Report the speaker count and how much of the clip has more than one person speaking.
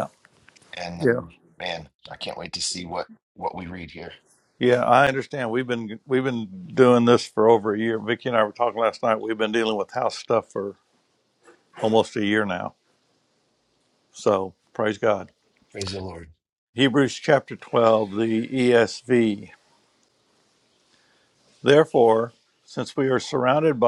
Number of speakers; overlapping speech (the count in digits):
2, about 1%